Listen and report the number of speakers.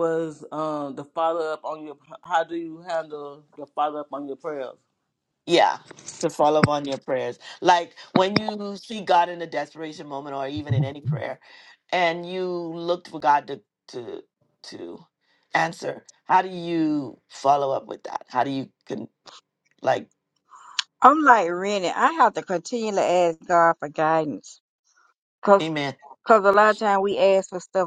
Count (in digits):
3